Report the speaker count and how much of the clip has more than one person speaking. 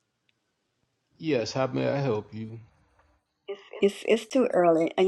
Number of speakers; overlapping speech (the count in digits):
2, no overlap